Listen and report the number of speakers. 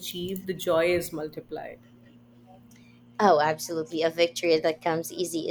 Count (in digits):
2